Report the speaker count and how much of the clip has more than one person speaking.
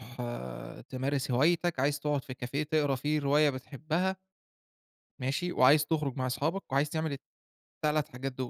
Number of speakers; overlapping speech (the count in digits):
1, no overlap